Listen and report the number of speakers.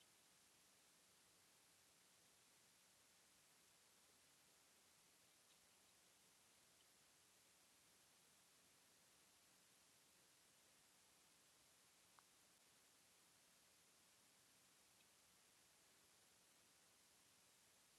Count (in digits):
0